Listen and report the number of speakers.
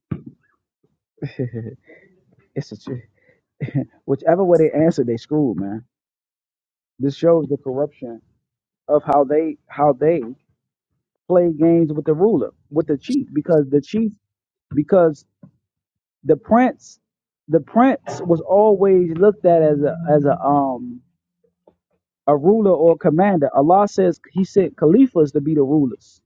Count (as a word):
one